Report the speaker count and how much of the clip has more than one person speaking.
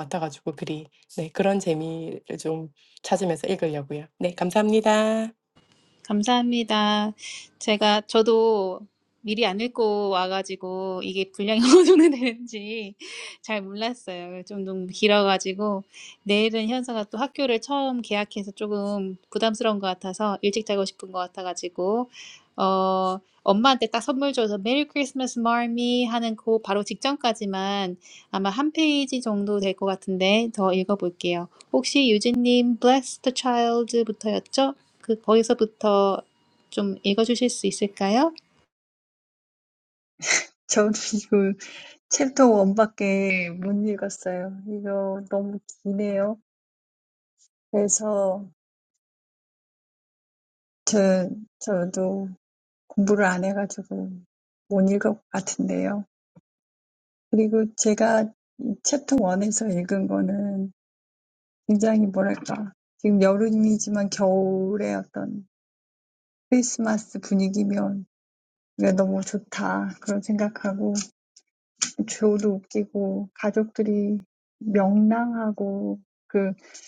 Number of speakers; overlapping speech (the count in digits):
3, no overlap